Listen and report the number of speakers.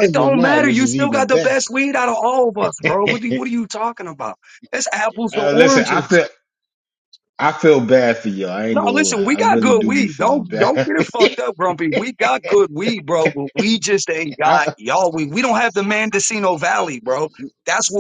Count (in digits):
2